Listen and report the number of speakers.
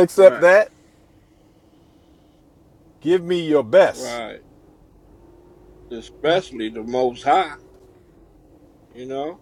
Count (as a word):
two